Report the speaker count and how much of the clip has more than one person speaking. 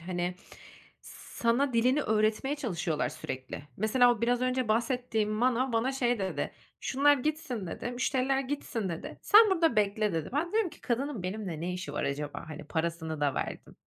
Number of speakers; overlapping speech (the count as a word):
one, no overlap